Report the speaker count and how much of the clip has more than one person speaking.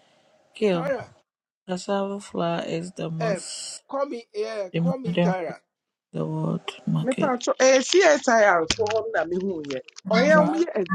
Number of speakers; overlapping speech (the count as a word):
three, about 14%